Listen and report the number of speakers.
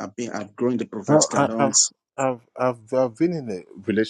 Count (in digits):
2